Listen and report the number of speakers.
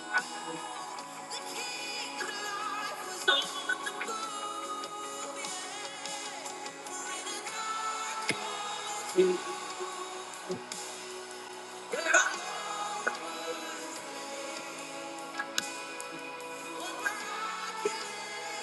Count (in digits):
0